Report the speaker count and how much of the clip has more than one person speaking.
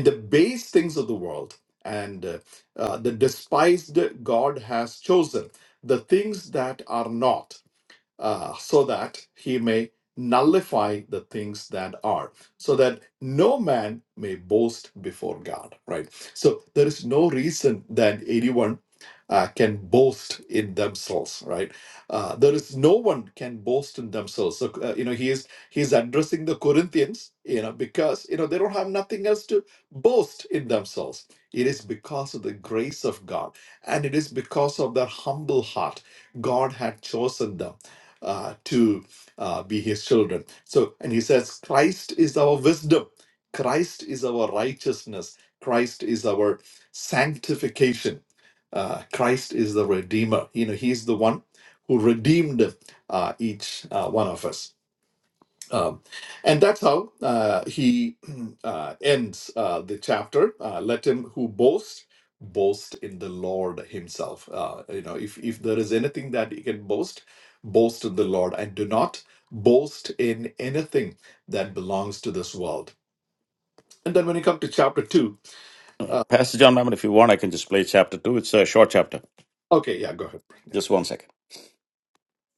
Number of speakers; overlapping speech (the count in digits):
2, under 1%